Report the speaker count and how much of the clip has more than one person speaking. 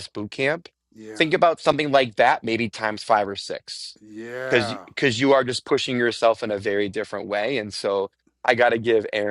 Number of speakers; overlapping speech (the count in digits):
2, about 5%